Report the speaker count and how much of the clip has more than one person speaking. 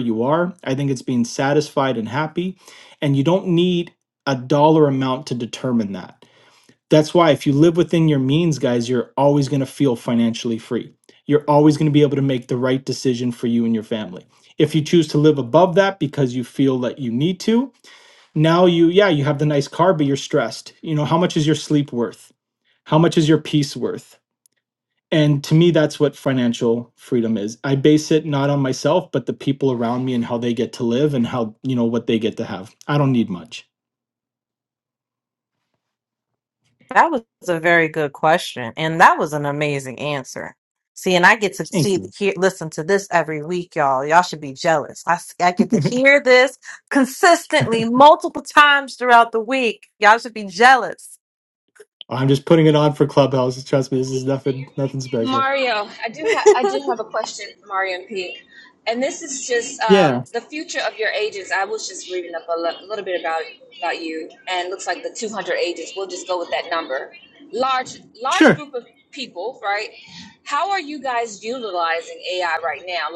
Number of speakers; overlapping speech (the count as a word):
three, about 2%